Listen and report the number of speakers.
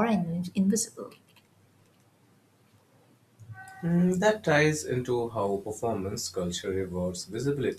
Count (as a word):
two